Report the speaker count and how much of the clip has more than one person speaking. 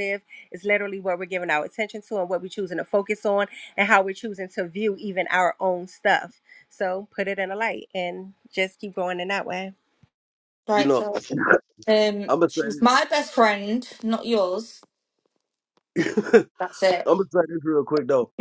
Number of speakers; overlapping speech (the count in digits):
3, about 4%